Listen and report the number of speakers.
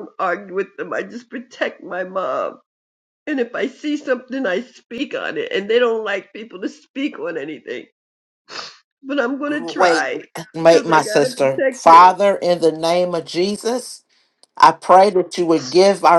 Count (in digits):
2